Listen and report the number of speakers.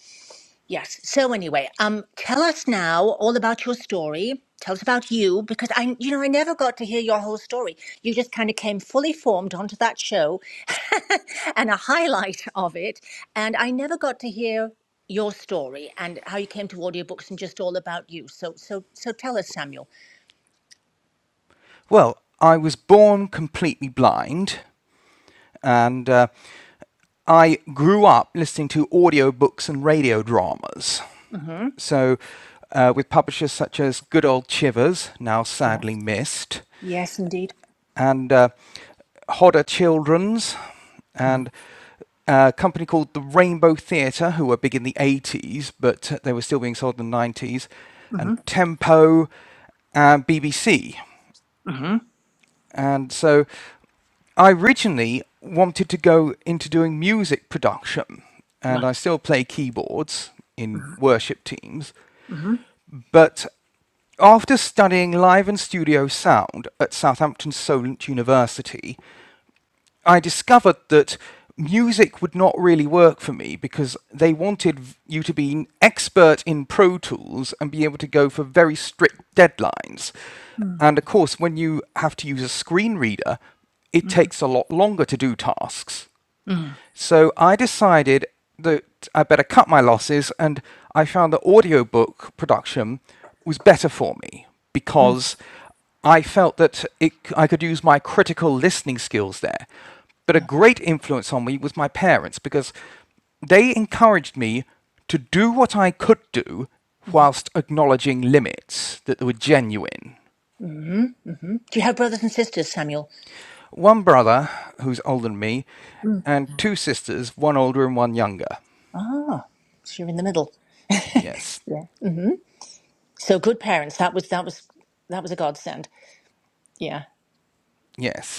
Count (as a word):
two